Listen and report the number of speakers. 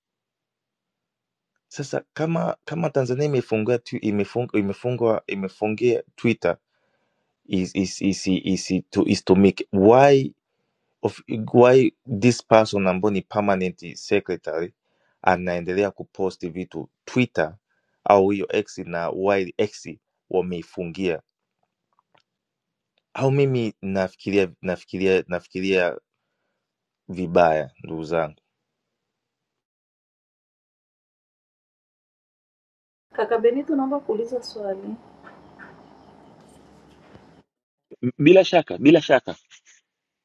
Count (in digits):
3